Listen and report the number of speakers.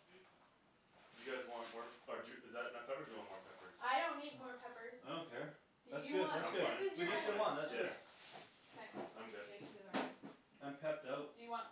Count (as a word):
four